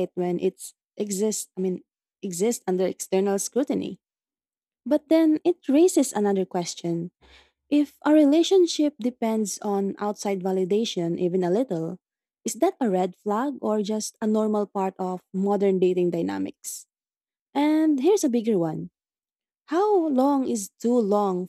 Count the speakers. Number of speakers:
1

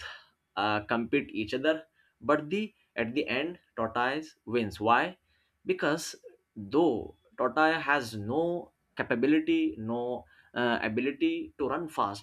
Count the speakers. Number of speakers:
1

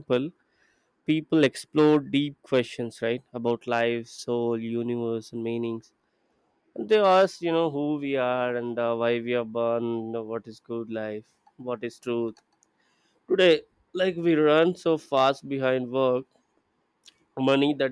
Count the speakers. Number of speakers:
1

